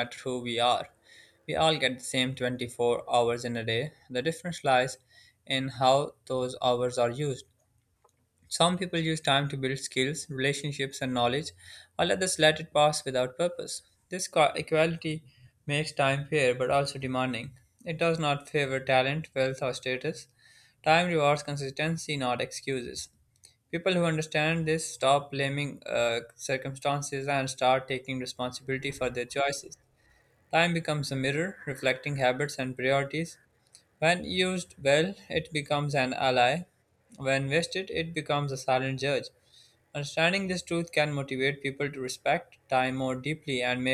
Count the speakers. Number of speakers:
one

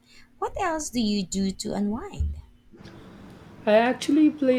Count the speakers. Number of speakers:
two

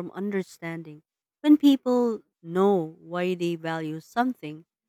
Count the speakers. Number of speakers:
one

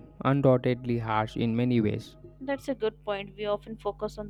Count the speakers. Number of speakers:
two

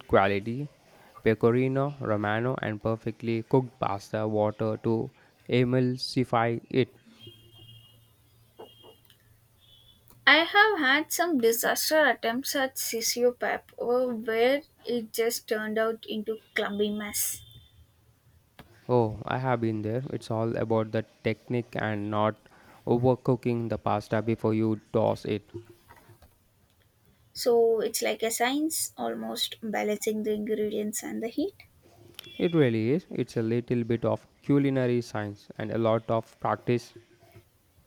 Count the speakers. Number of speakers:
two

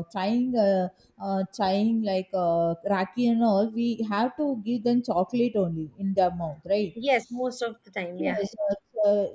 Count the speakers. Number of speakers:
two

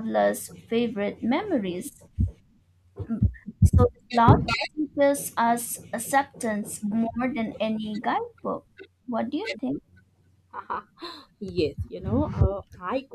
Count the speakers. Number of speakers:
two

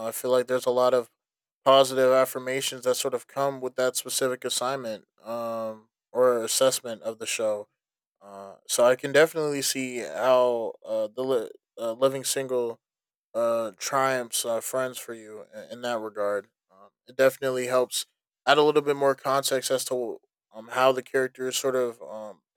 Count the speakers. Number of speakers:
one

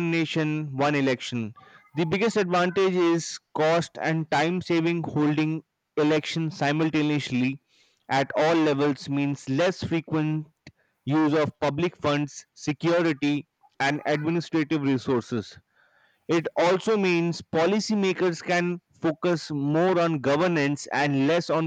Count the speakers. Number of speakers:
one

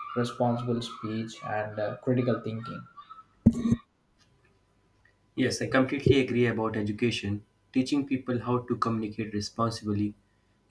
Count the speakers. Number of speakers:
two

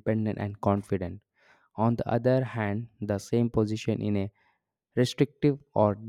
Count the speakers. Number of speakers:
one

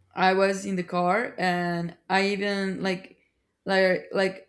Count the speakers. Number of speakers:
one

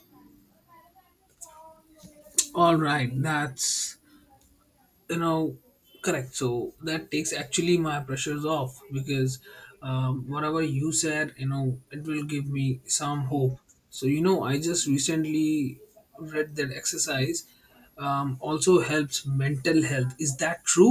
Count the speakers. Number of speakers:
one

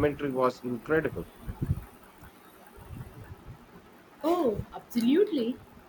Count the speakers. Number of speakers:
two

